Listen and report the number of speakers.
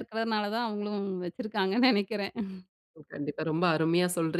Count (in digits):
2